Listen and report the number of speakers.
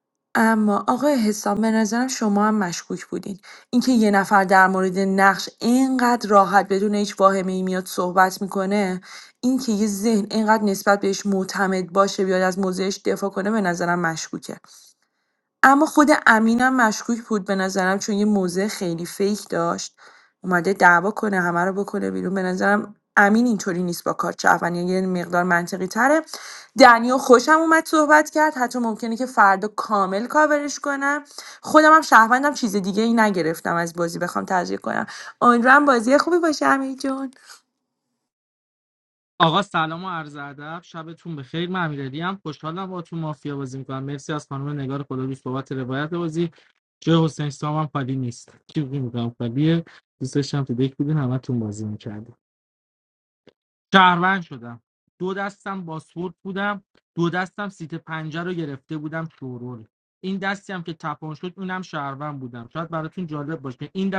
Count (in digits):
2